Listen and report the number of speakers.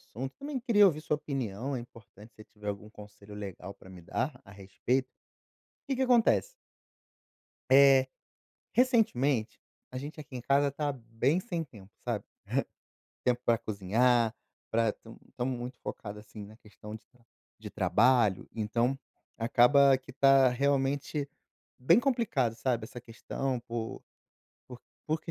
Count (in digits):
1